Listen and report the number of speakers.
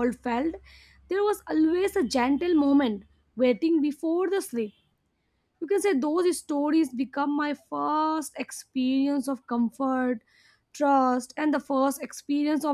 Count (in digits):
1